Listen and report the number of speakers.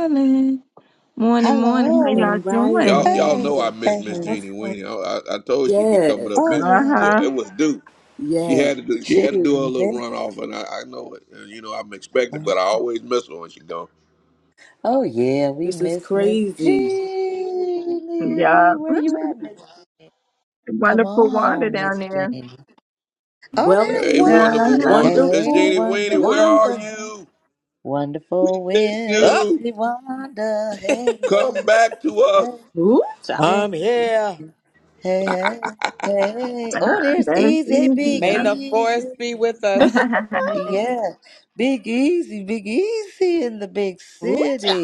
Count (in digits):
5